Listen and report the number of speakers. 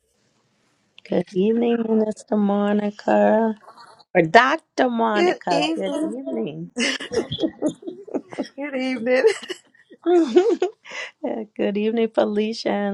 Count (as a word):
two